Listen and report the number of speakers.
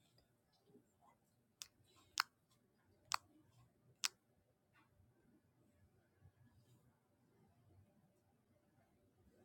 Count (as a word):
zero